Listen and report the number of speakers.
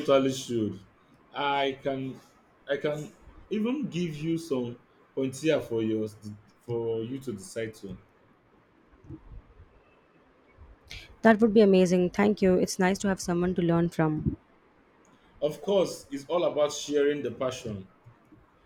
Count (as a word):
two